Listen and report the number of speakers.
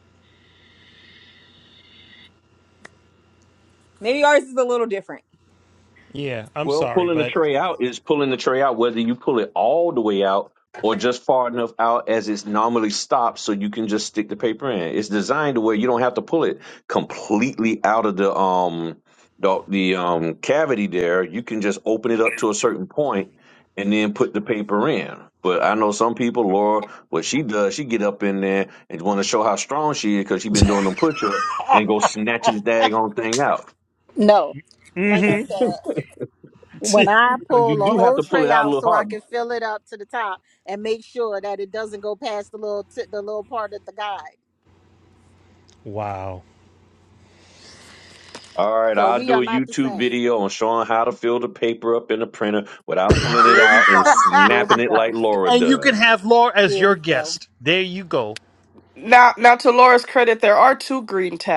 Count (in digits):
5